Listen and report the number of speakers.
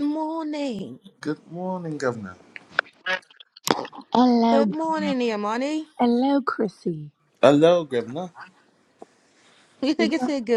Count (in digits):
3